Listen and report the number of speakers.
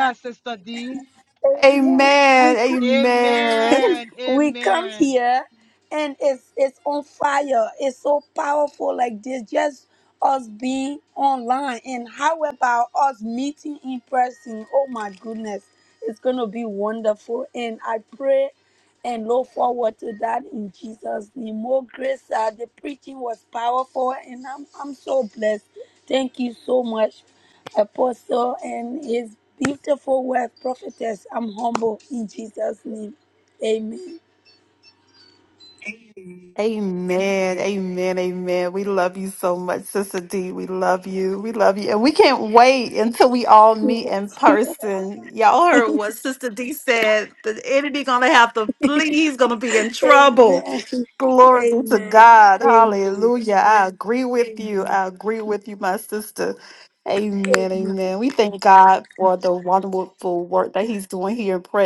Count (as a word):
three